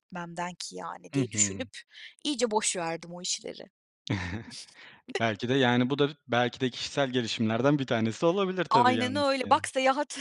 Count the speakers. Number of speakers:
2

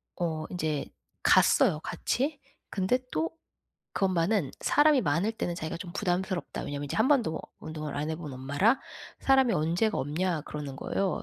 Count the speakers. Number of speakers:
1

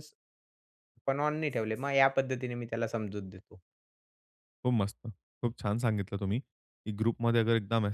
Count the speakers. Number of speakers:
2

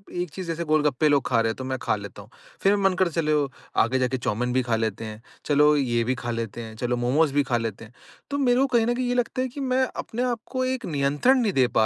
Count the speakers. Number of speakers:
1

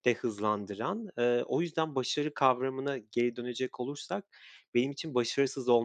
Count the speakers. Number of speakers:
1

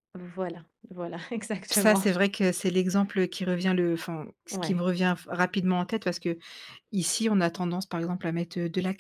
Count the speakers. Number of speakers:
2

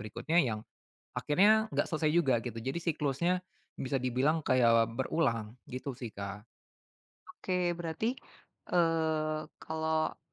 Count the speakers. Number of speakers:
2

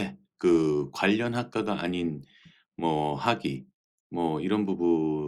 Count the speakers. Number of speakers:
1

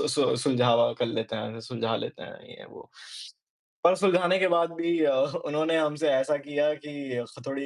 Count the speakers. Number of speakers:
1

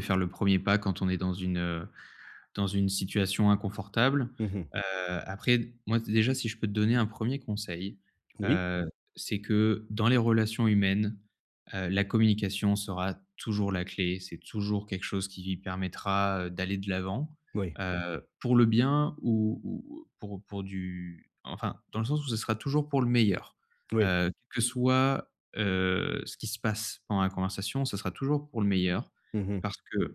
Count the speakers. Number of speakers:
2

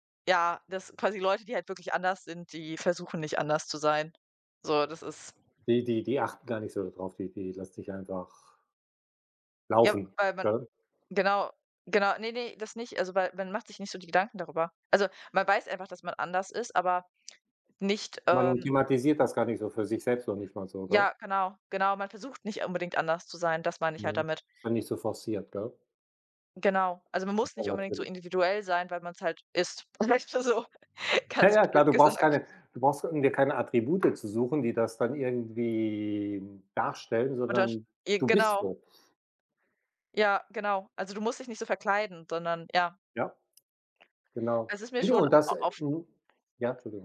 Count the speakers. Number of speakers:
2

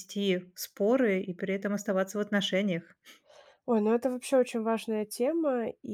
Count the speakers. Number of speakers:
2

